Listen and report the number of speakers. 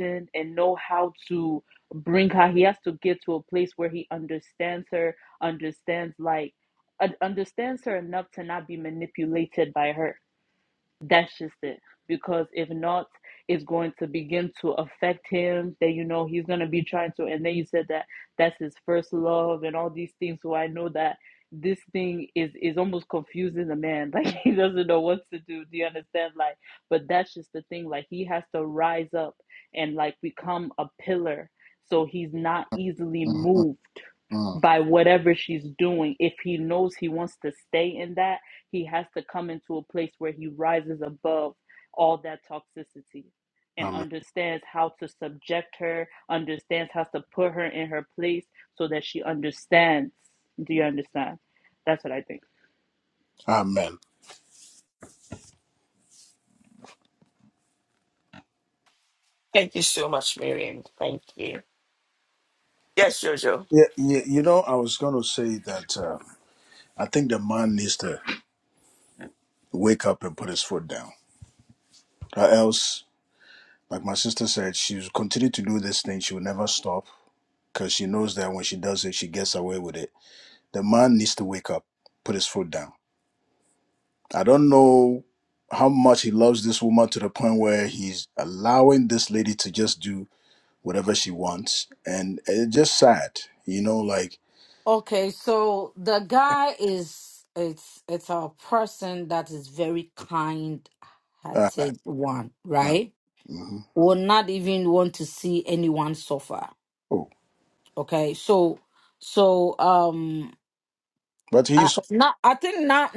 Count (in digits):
4